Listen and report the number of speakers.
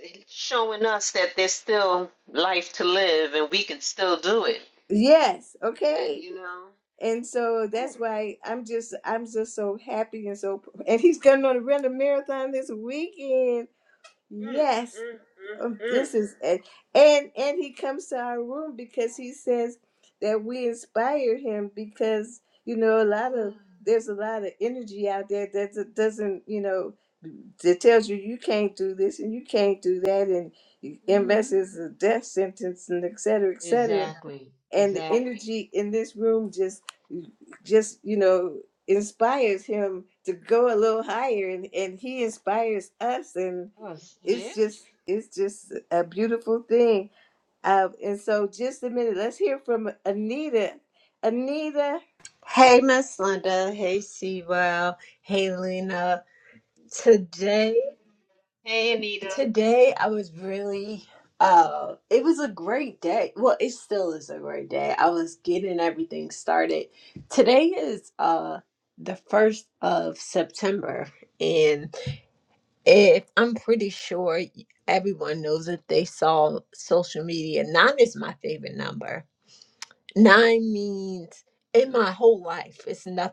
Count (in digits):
3